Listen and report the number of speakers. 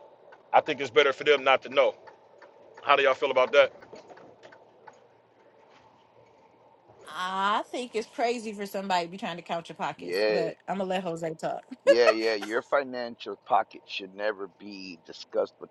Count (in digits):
3